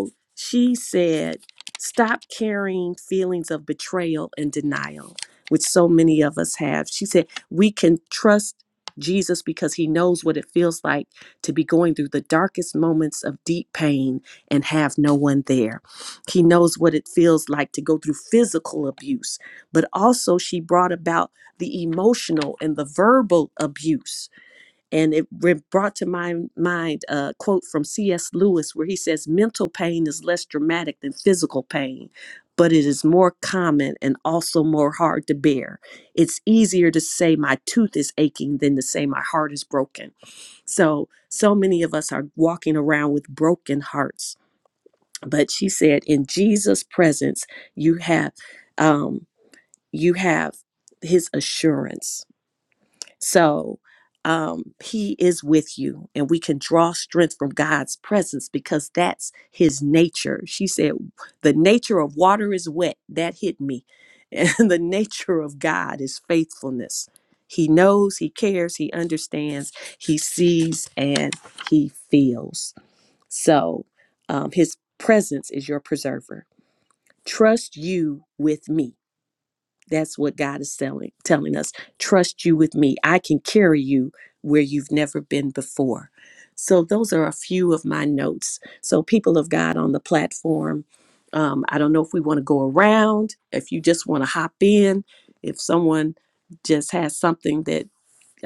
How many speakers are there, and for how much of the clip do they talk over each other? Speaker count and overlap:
1, no overlap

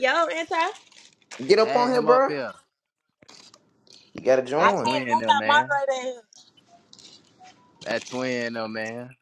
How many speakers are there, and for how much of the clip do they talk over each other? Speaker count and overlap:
3, about 20%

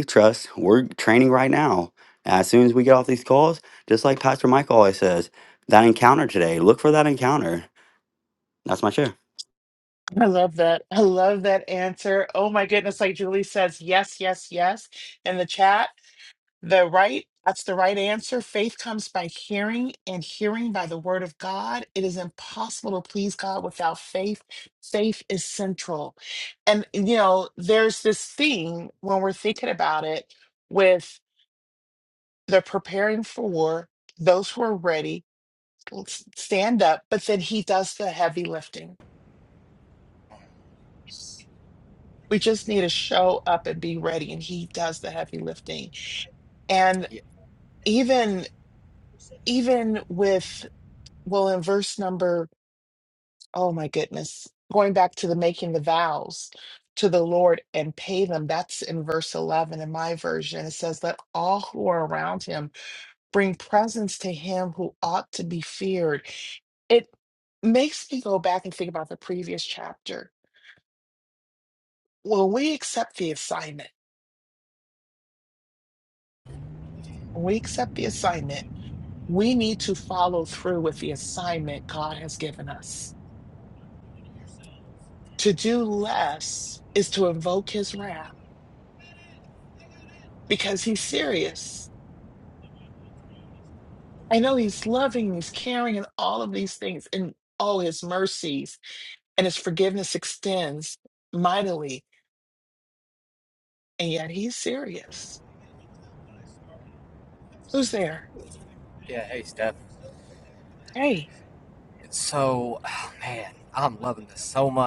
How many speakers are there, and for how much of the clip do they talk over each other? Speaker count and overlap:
3, no overlap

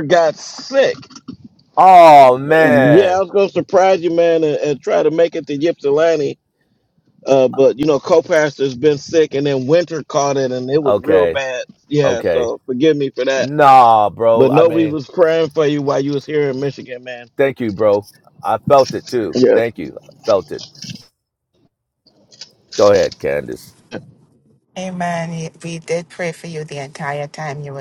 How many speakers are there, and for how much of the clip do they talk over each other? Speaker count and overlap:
3, about 9%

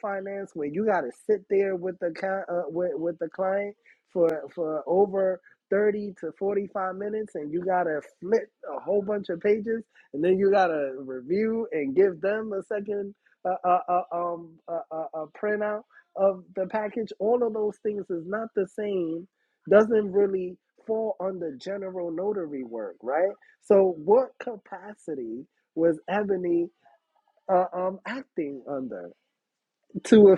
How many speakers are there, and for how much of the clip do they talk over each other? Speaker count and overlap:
1, no overlap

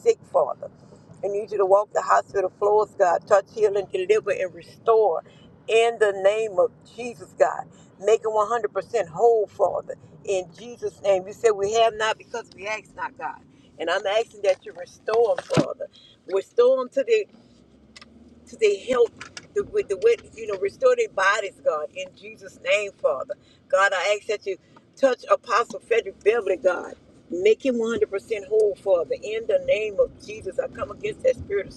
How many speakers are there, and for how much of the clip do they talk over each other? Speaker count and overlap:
1, no overlap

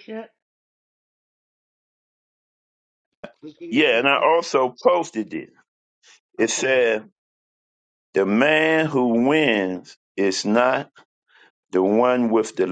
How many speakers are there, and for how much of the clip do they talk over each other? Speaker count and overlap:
2, about 8%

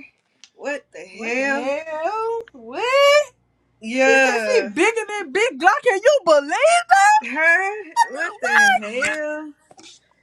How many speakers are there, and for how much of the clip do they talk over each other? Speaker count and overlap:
2, about 16%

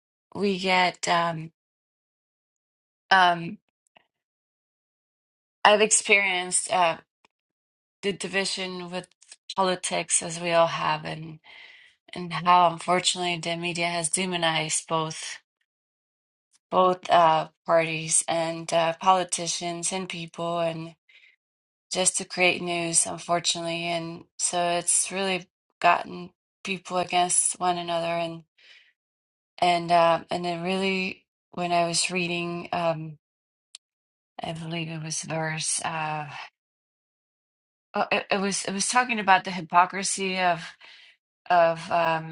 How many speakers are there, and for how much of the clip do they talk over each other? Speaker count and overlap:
1, no overlap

